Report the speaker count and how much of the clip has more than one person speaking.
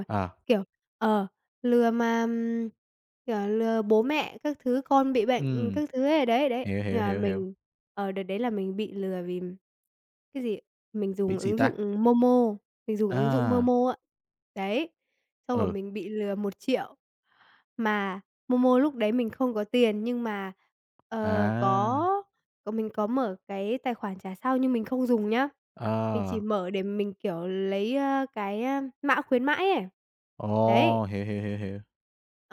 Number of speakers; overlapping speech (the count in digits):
2, about 11%